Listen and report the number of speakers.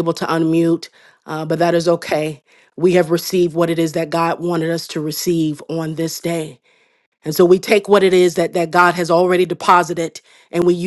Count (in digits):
1